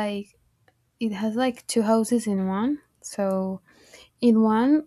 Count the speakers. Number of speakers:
1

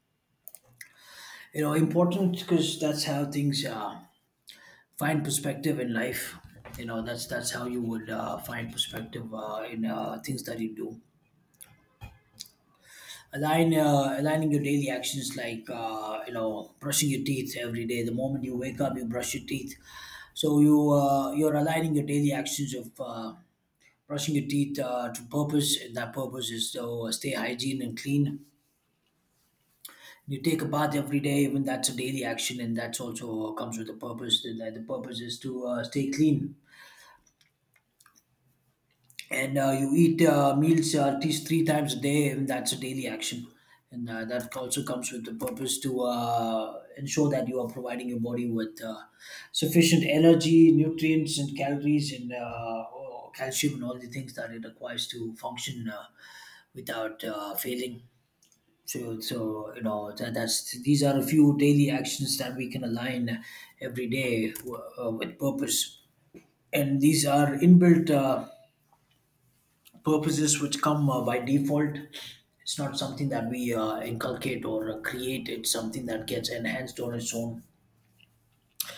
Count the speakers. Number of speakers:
1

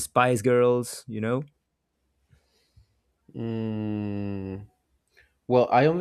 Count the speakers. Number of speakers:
2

